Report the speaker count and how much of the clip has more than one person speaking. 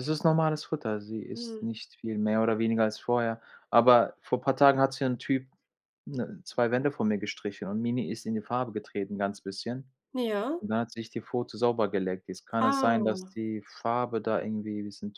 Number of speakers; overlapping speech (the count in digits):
2, about 6%